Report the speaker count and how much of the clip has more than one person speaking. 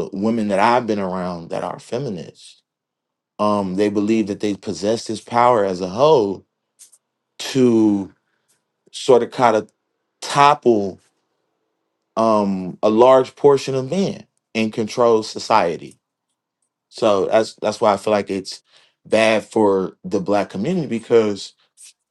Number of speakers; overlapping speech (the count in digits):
1, no overlap